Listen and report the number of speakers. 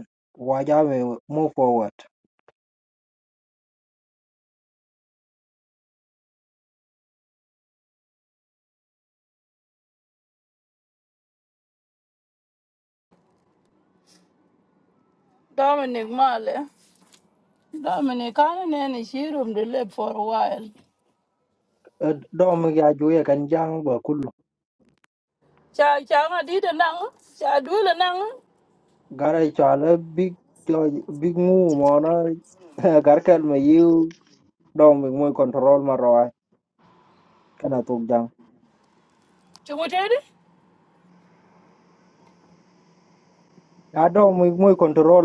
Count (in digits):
2